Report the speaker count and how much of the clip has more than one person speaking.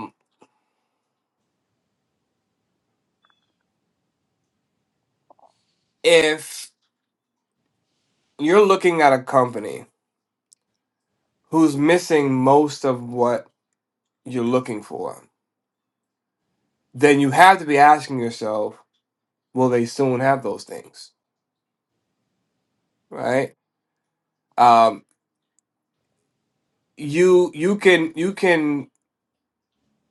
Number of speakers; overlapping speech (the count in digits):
1, no overlap